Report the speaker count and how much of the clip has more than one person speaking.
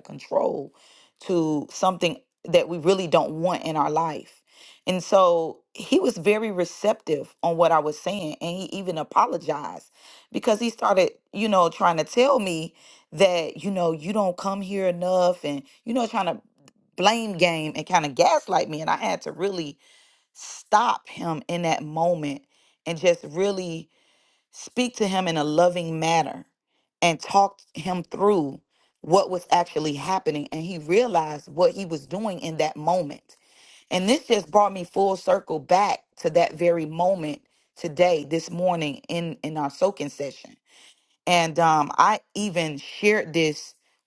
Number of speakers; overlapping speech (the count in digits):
1, no overlap